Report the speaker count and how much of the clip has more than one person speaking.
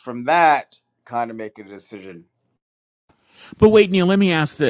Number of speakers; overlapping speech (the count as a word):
two, no overlap